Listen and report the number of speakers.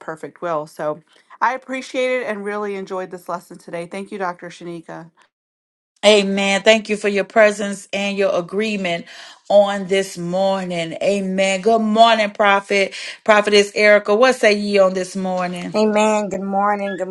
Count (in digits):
3